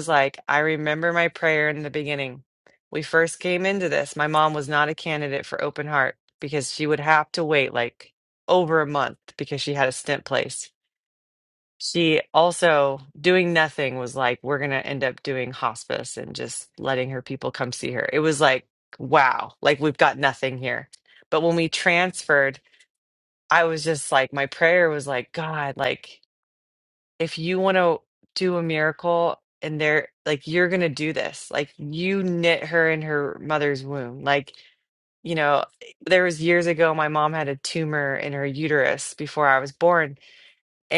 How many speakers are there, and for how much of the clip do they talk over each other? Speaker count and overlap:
1, no overlap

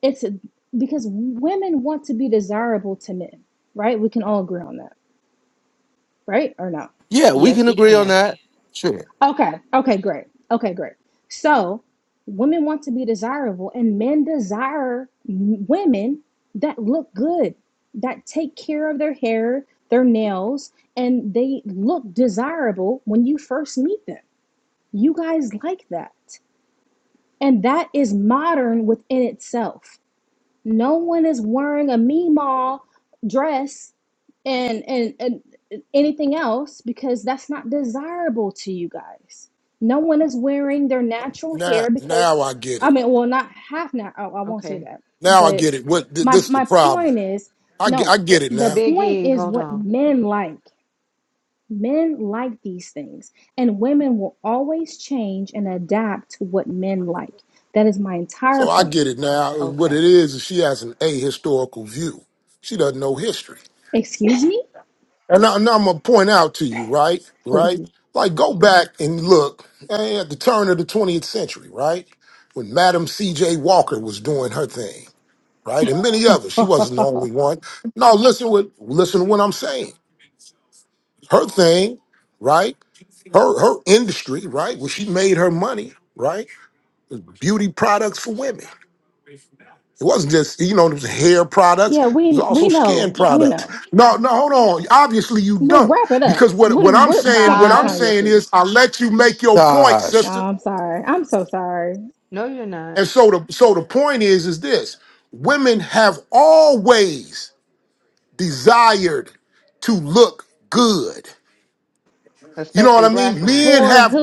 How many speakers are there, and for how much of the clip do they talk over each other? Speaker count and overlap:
4, about 11%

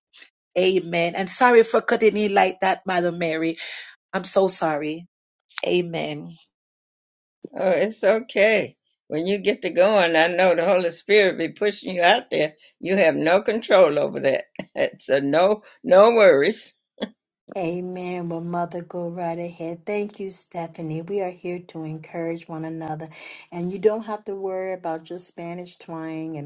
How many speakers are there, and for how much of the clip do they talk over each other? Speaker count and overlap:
3, no overlap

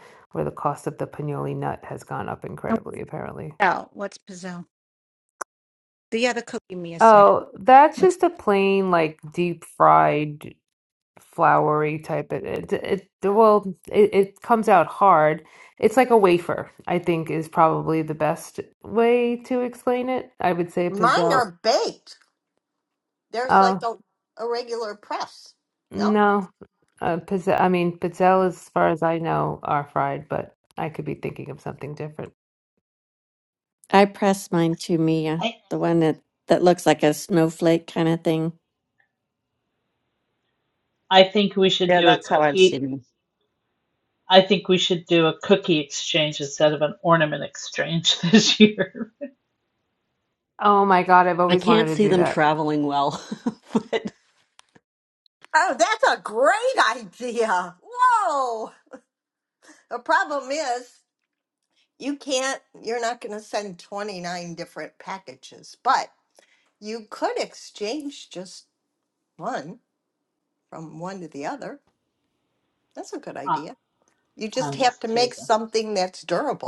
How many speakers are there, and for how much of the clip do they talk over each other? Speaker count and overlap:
6, about 6%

